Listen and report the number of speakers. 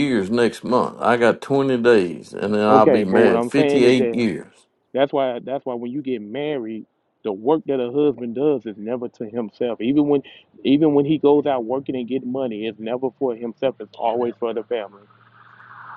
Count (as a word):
two